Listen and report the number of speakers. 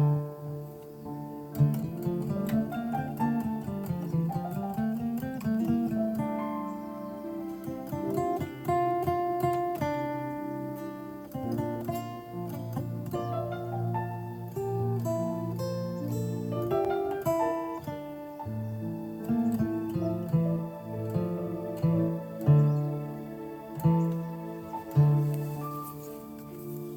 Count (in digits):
0